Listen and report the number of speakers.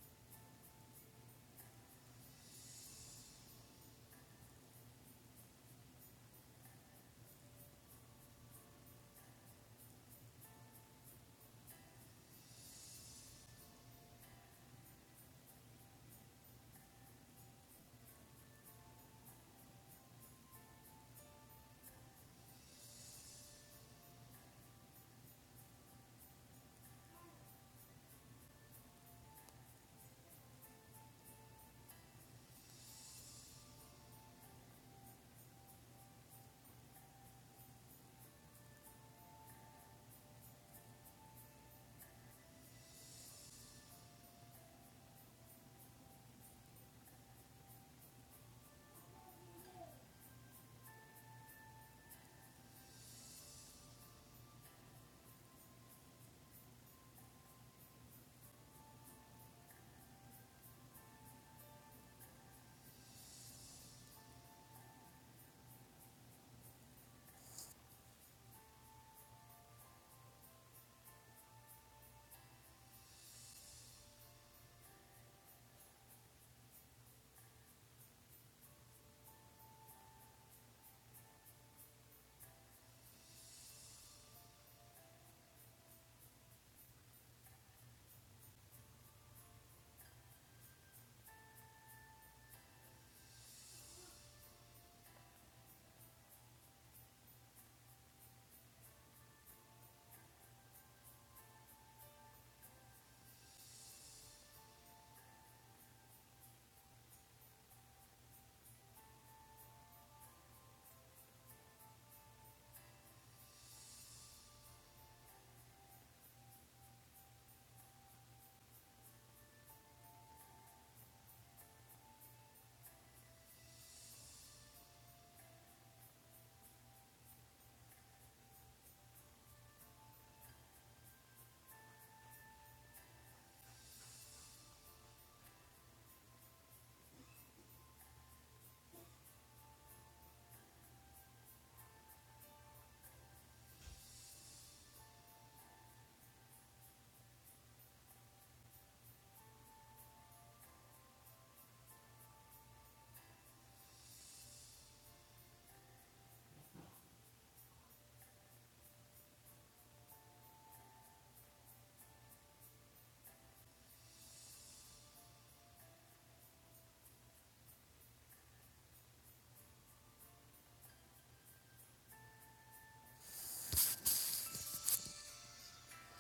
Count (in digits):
0